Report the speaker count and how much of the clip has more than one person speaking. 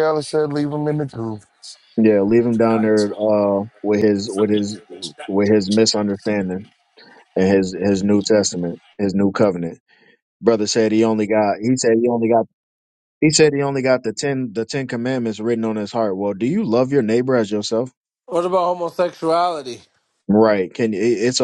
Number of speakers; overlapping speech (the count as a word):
three, no overlap